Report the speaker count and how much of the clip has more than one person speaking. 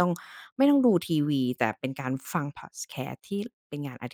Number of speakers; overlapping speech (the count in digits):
1, no overlap